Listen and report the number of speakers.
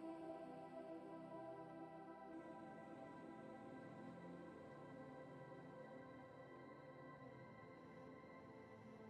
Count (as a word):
zero